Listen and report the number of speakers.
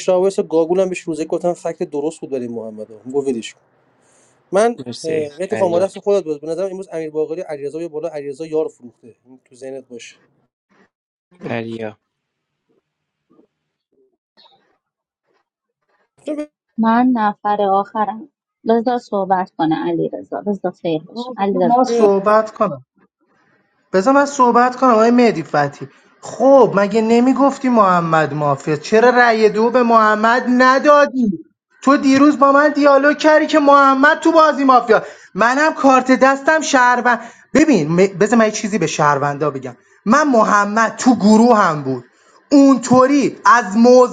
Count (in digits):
4